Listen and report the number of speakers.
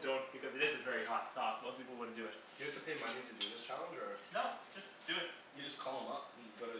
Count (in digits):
3